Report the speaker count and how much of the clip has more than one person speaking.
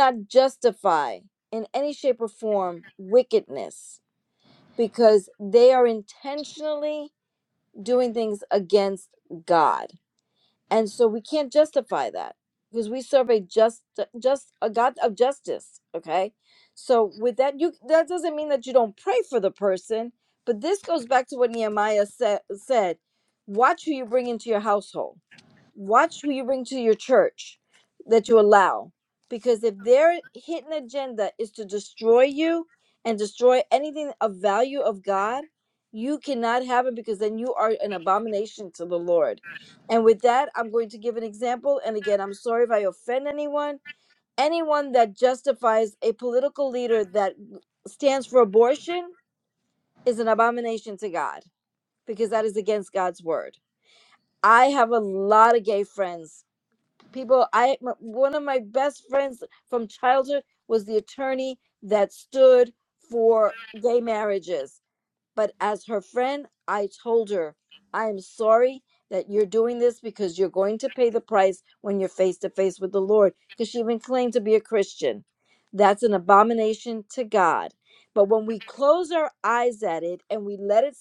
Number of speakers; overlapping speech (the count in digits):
1, no overlap